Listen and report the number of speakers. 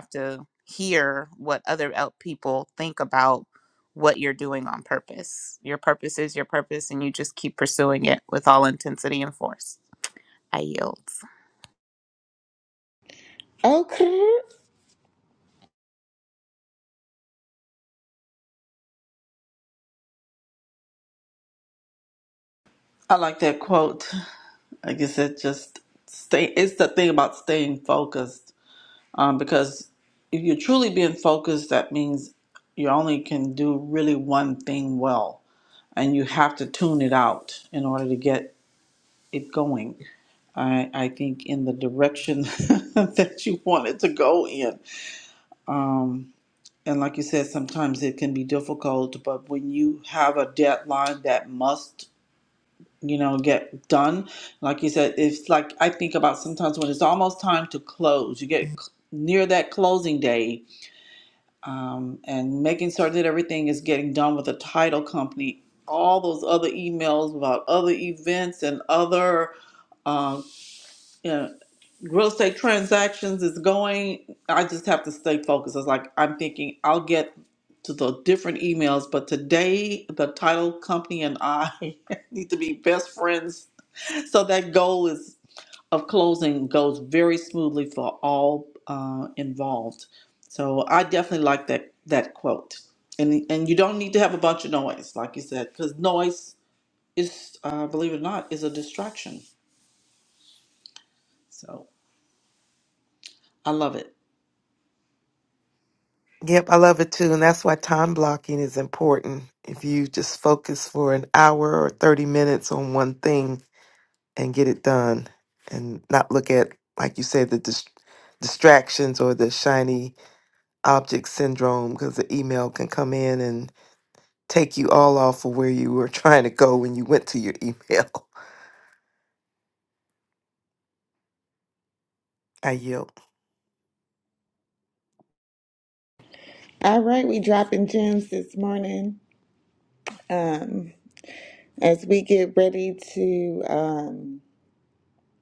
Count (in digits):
4